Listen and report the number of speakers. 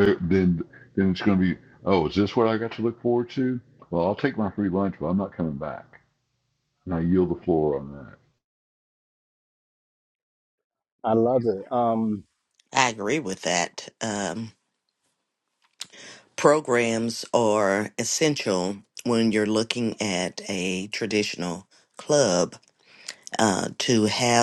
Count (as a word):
three